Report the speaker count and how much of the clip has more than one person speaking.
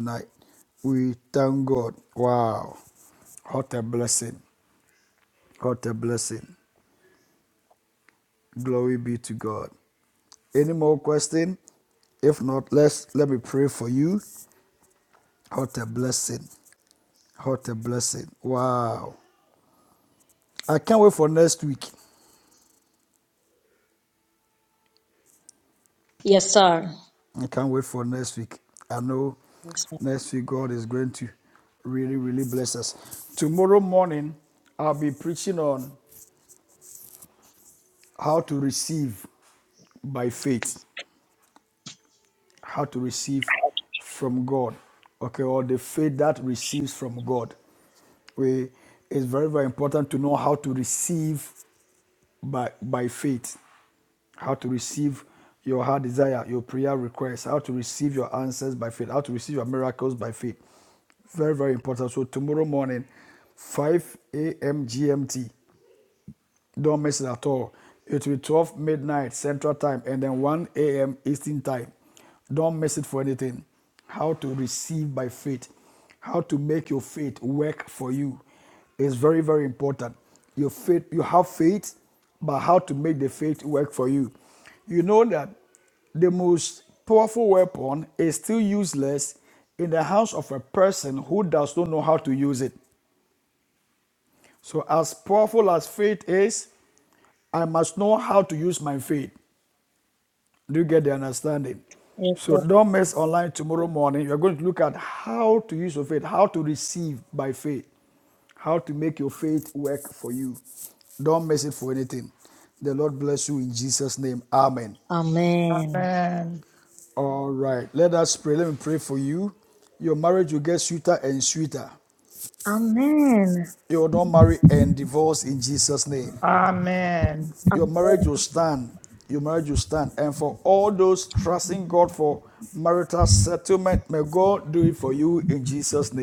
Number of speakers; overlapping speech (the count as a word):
three, about 1%